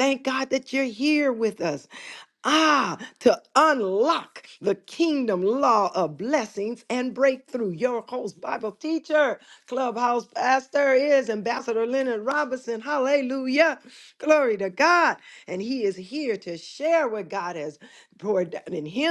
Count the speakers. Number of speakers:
one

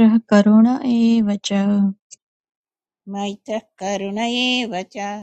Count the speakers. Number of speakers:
two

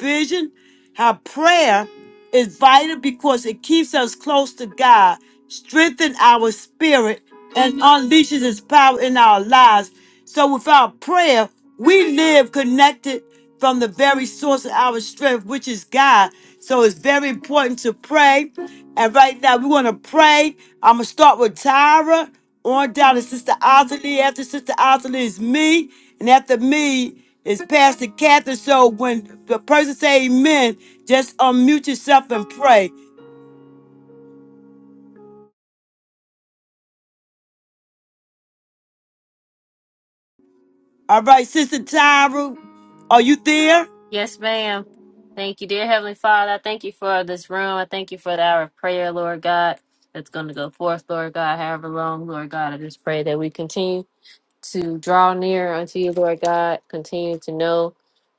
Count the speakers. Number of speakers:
two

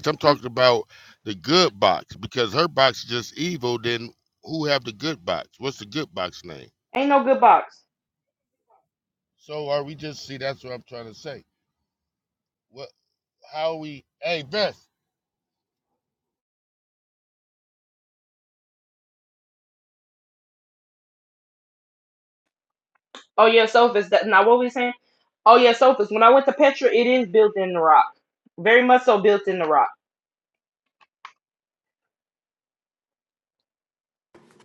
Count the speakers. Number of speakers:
two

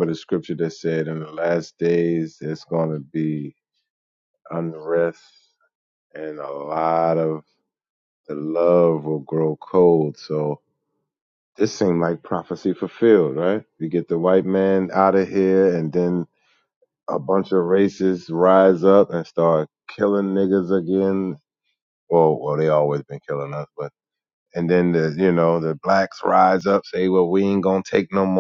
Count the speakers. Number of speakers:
one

